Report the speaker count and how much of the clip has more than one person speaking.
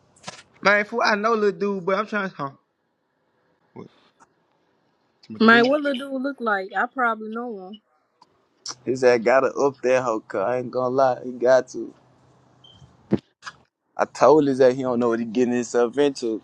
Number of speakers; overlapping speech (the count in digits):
3, about 2%